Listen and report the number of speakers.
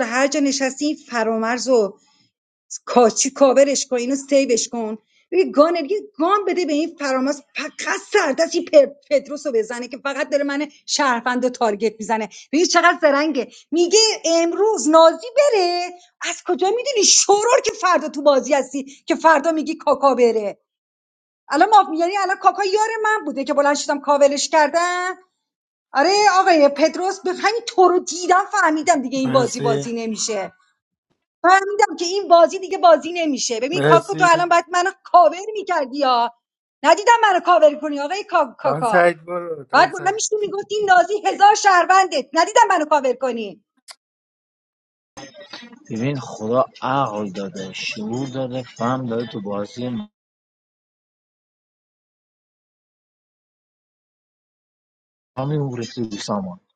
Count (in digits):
3